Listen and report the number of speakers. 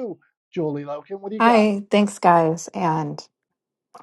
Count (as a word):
two